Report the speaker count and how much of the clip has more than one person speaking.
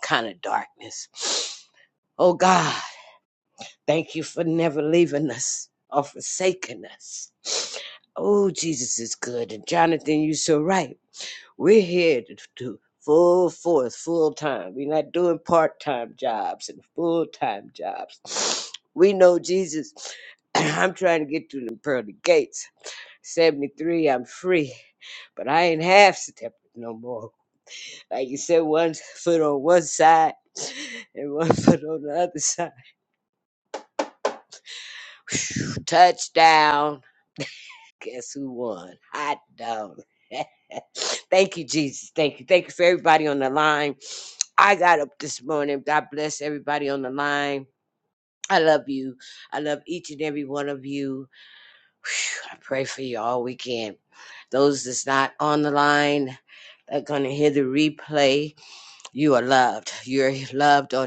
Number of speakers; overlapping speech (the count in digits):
1, no overlap